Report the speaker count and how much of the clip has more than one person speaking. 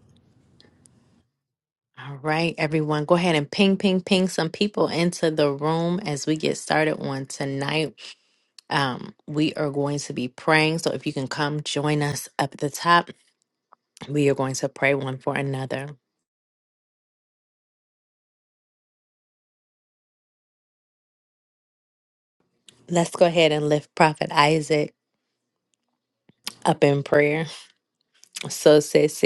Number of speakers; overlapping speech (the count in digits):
1, no overlap